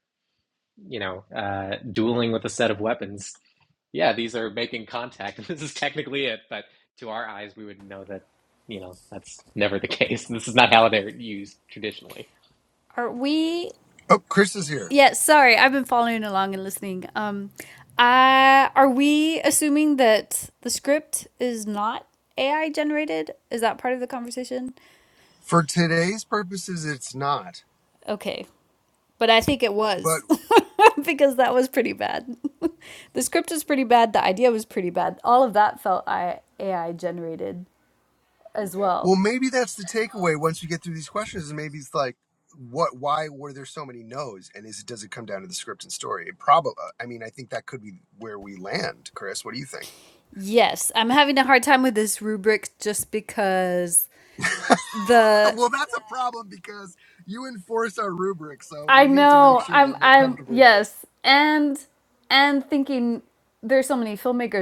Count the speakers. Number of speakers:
3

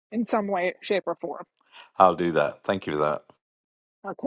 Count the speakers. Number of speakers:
2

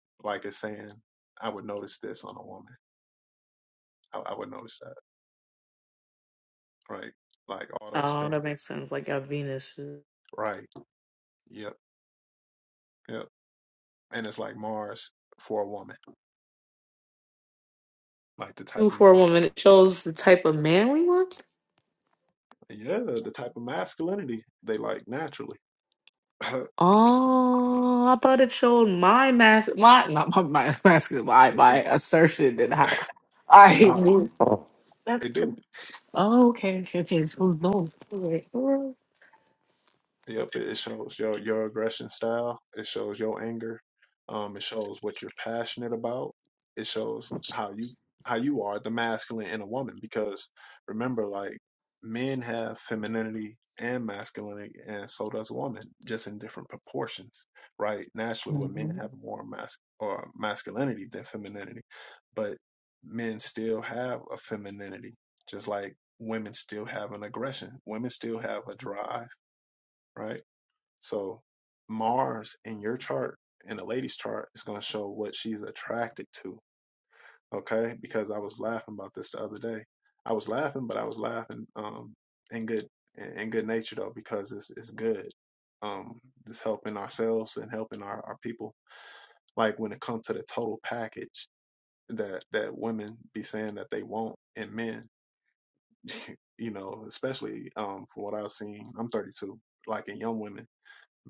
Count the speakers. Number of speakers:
2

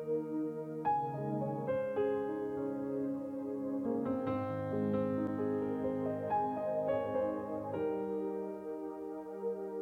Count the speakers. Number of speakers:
0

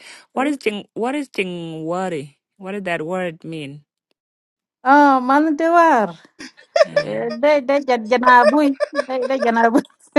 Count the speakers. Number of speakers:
2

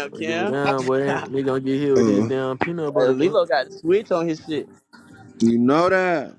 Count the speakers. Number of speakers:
3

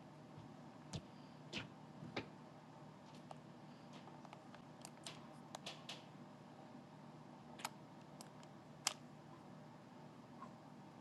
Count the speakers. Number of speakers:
0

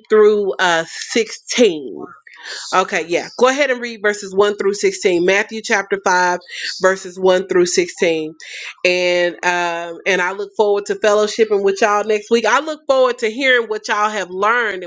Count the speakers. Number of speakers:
1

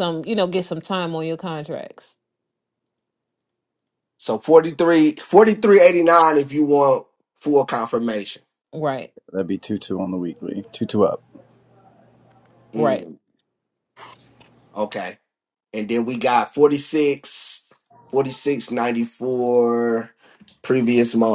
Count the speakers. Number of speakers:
3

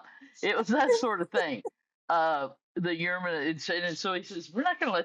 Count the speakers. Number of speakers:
1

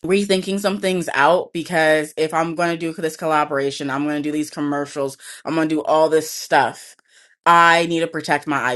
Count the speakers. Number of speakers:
1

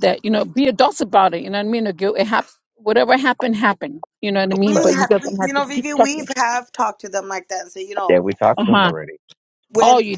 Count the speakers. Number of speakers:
3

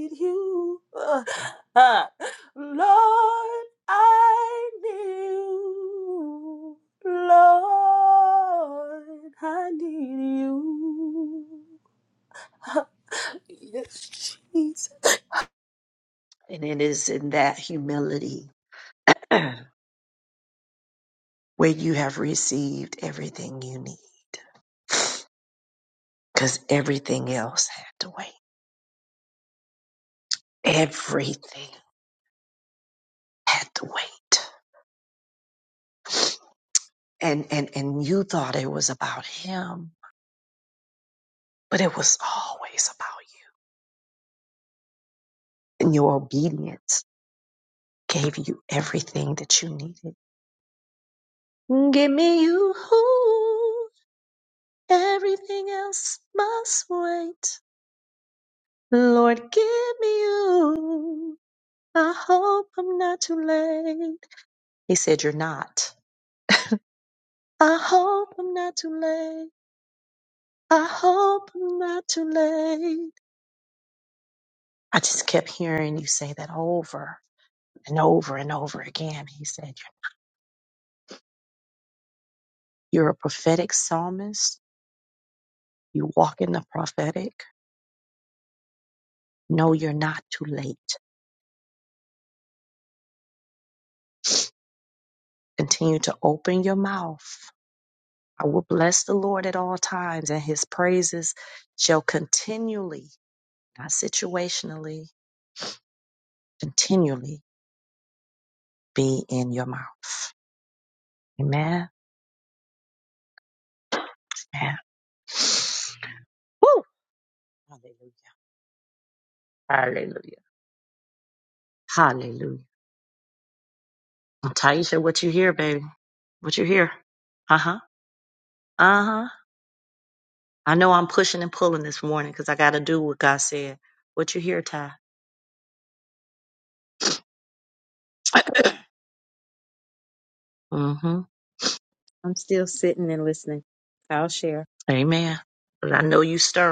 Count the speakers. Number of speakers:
3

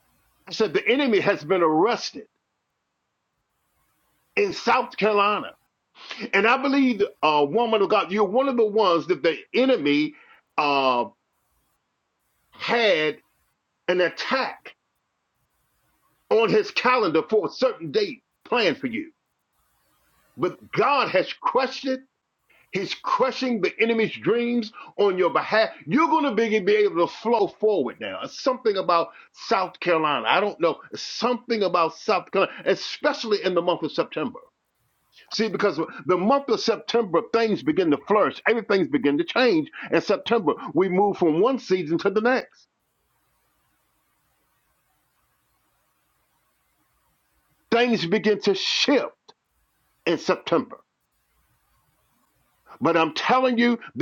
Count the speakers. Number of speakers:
1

